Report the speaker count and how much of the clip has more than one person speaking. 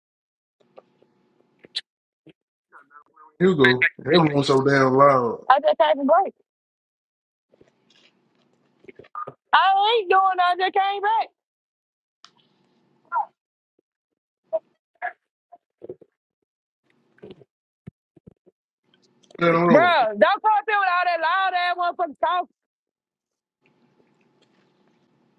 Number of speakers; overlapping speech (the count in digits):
2, about 1%